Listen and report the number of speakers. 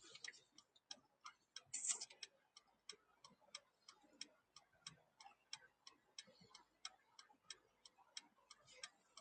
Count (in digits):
0